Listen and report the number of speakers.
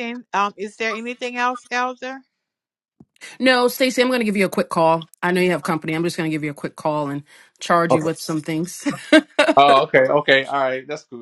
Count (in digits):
3